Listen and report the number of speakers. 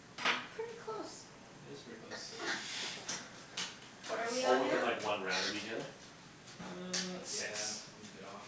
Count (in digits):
3